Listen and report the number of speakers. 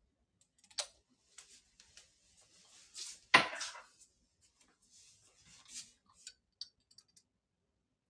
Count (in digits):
0